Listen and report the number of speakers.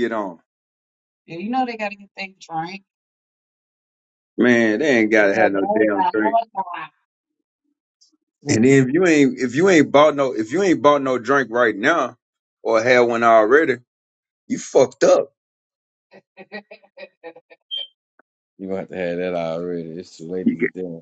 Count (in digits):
3